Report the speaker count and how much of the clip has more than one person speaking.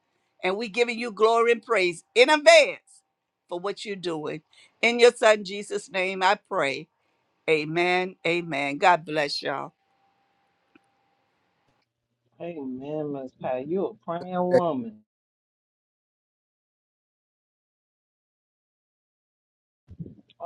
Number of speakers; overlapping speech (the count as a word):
two, no overlap